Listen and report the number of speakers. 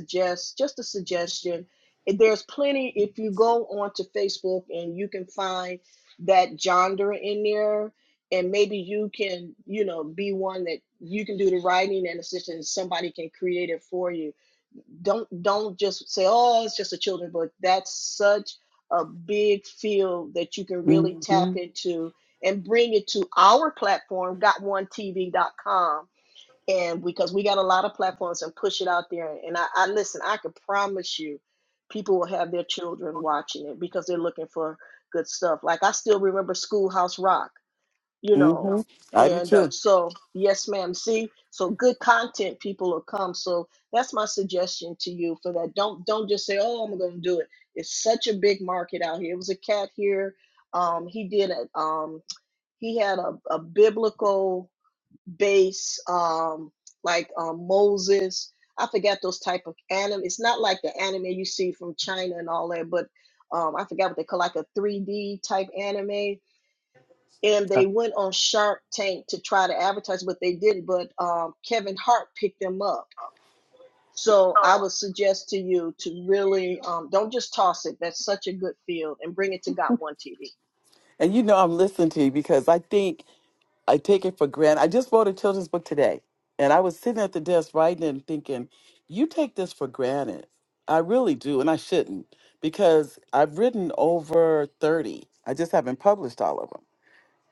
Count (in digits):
2